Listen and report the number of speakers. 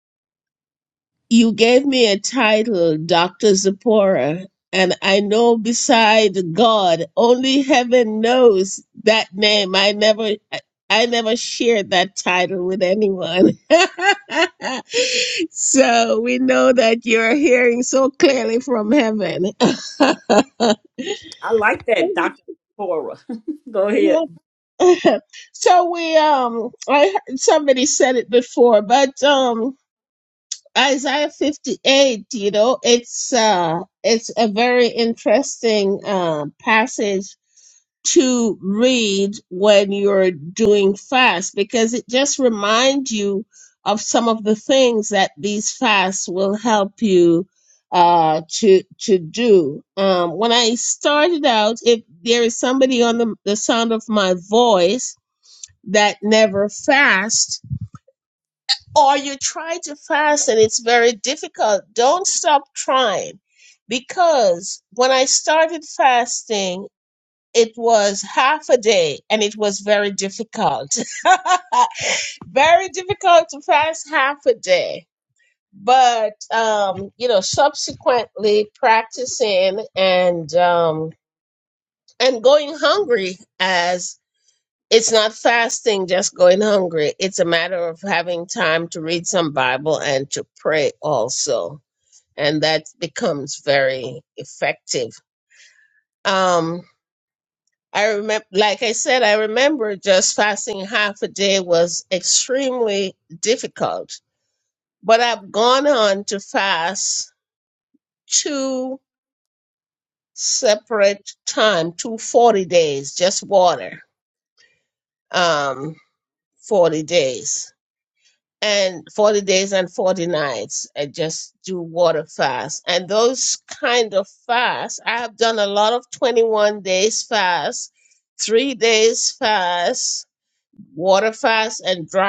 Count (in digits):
2